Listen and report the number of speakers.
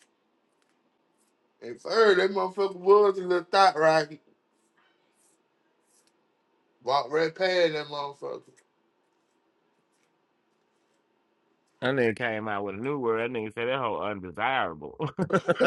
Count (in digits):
2